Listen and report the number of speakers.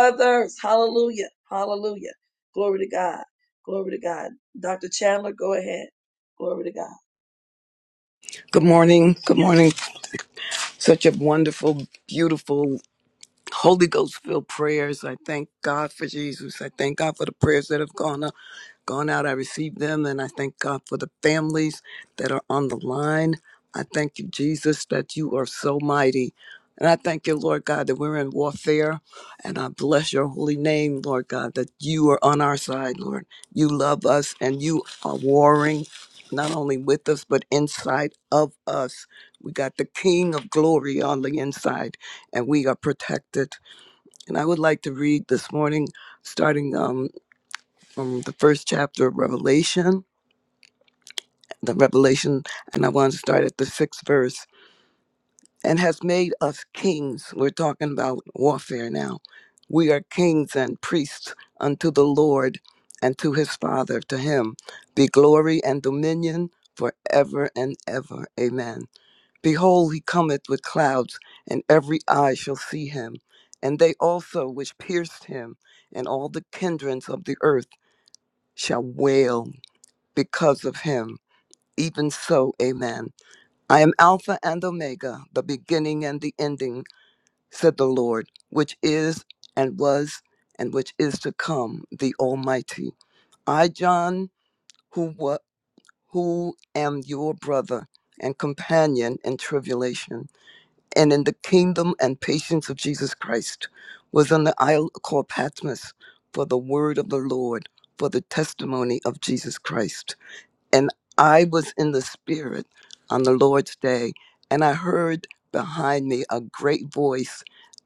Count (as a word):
two